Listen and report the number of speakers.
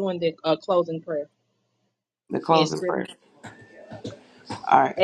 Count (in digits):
2